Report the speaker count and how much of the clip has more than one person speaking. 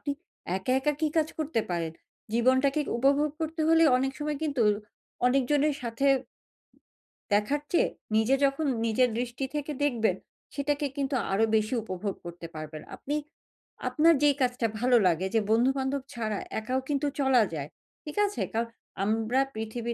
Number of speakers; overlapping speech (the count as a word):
one, no overlap